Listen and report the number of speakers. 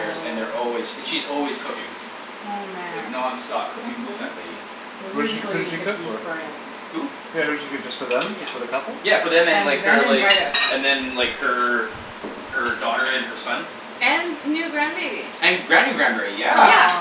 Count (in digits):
4